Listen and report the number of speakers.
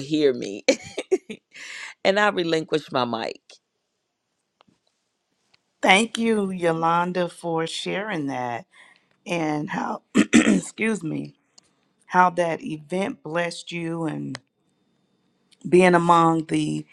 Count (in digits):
2